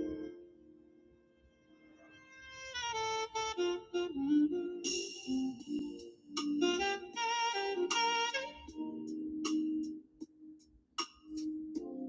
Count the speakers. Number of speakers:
0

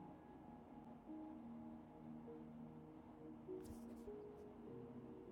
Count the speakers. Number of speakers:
0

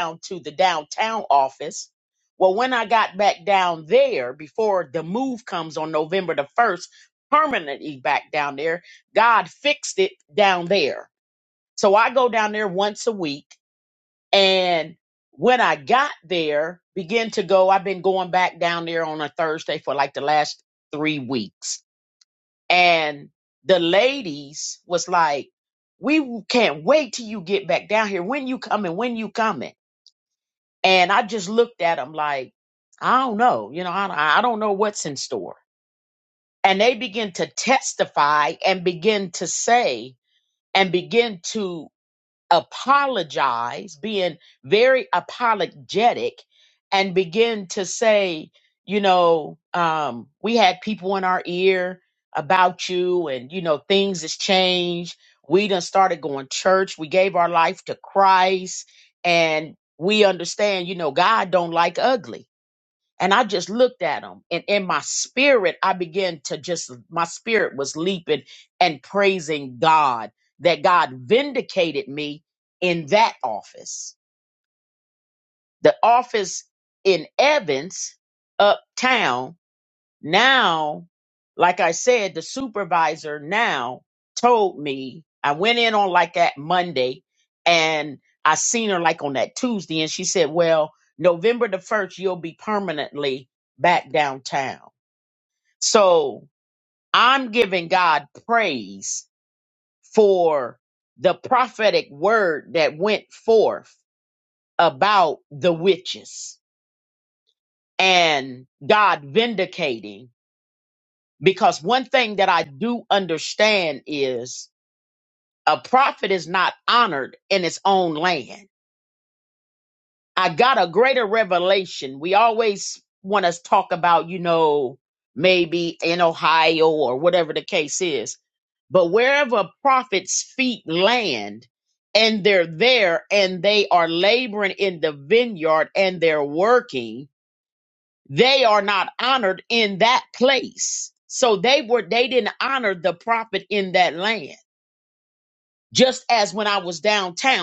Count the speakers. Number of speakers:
1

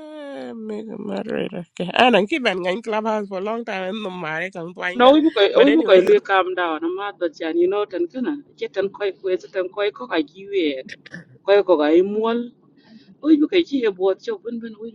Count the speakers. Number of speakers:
2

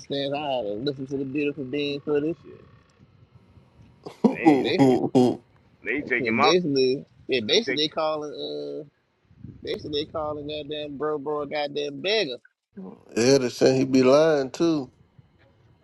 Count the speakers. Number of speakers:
3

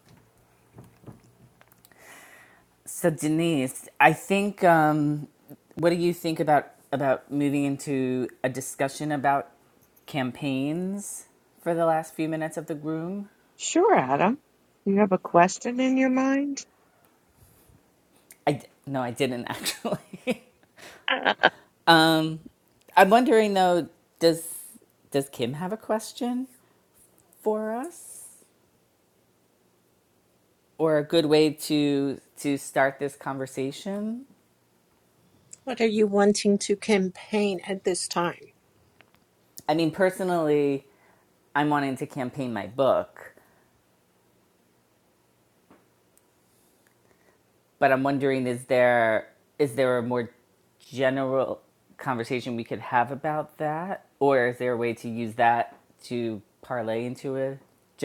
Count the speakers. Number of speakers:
3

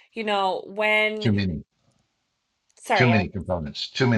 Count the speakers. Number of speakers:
2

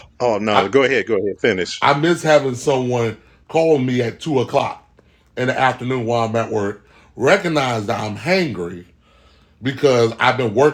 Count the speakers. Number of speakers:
2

